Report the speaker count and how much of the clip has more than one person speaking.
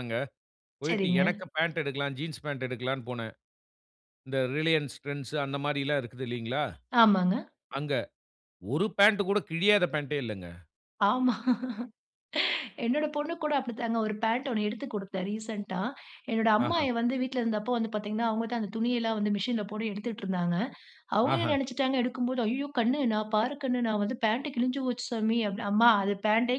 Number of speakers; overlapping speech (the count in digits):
2, about 4%